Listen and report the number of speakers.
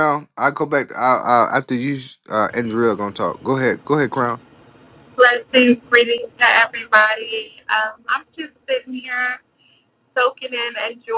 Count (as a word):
two